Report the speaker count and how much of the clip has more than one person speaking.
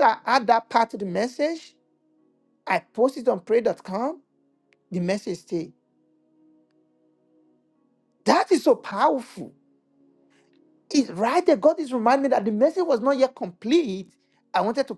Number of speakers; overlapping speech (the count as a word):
one, no overlap